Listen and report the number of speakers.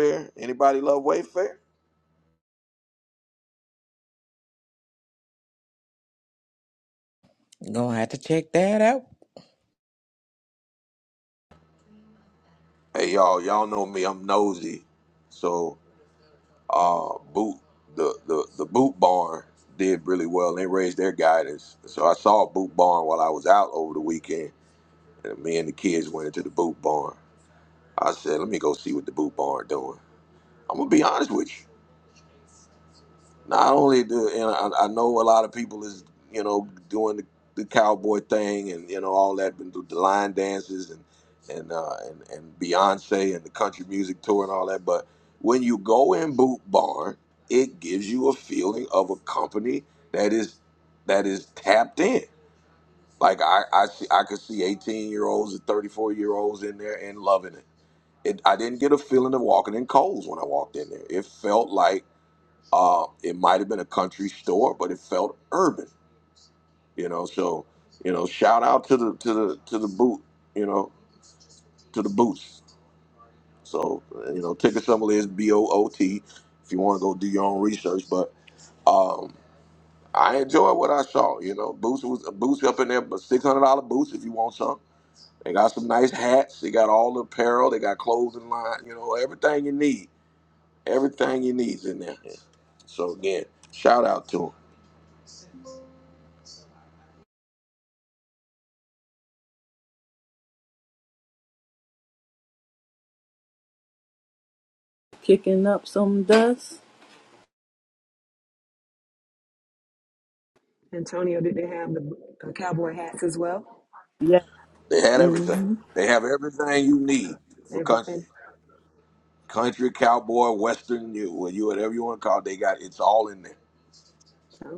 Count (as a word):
four